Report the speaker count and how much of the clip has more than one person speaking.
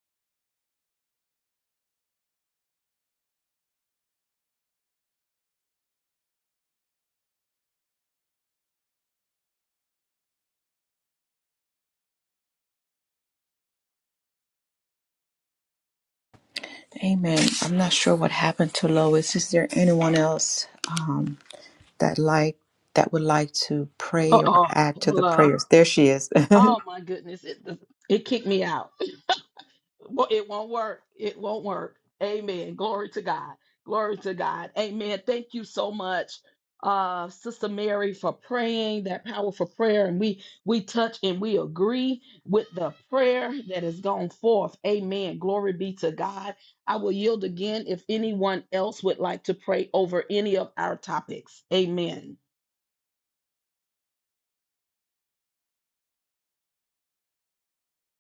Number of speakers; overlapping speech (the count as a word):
two, about 2%